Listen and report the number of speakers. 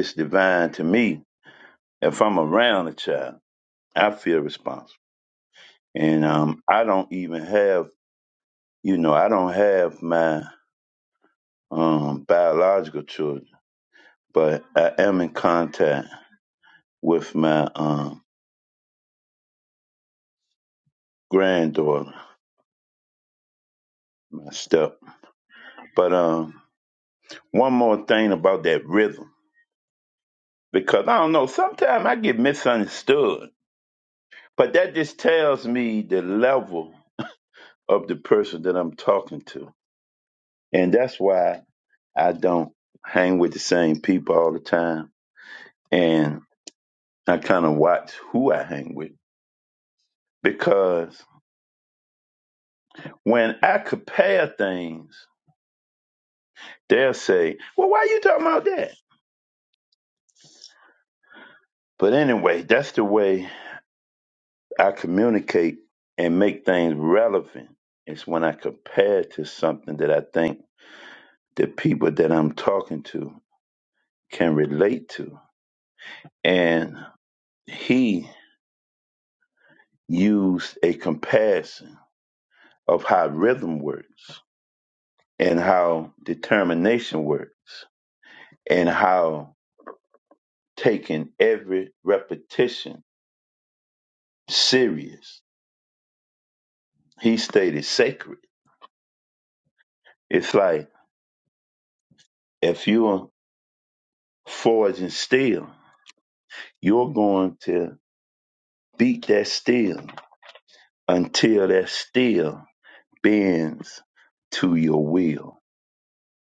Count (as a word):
one